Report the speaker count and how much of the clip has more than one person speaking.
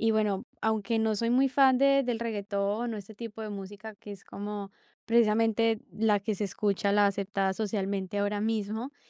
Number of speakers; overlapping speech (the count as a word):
one, no overlap